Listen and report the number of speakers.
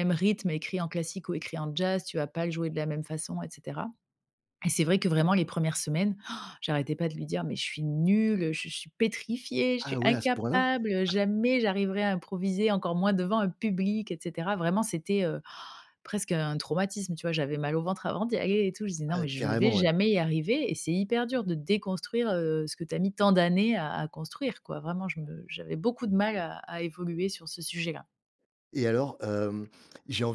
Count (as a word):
two